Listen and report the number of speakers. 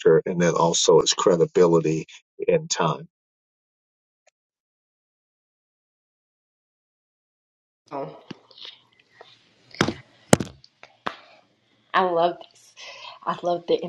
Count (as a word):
two